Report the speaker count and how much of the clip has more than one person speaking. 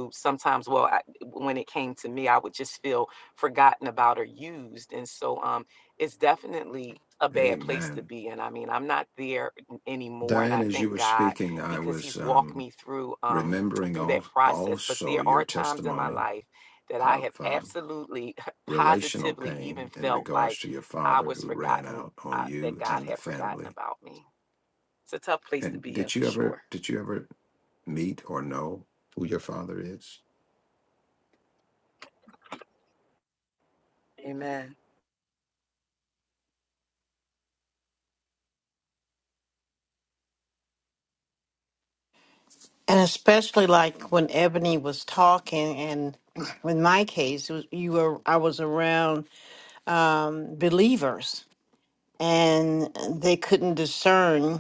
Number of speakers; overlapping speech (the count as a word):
three, about 21%